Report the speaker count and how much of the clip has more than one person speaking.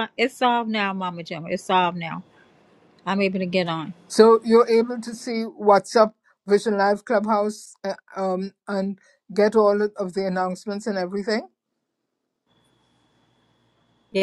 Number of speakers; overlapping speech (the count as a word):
two, no overlap